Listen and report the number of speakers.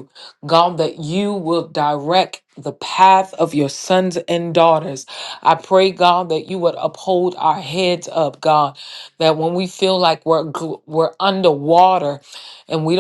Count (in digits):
1